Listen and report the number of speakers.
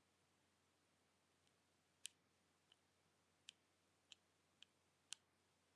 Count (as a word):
zero